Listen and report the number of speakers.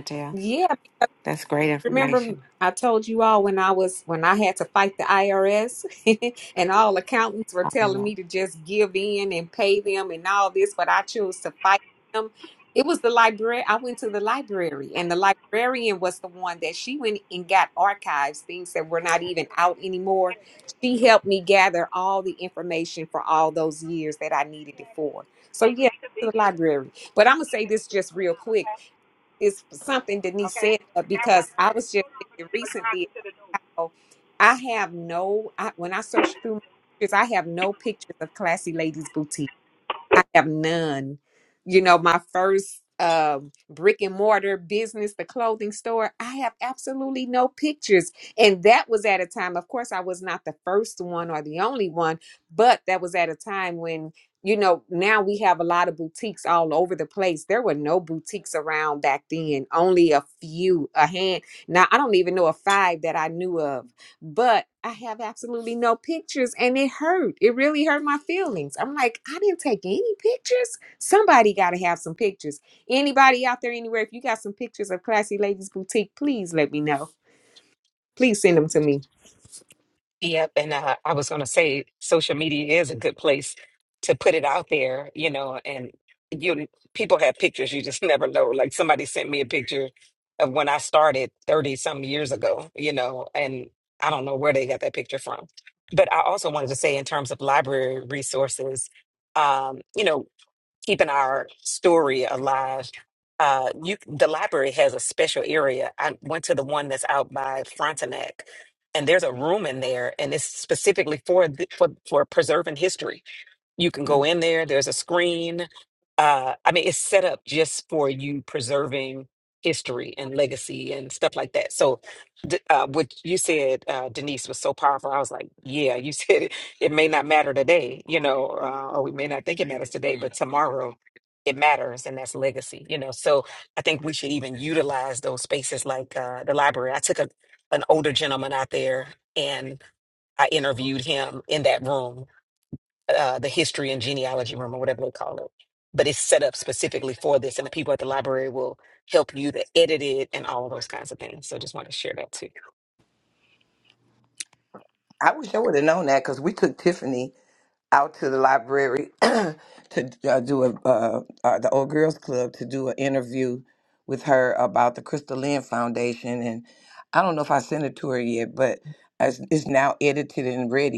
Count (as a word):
four